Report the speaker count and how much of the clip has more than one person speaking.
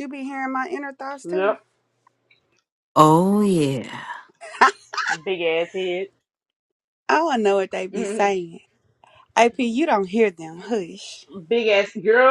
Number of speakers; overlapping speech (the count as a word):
three, about 2%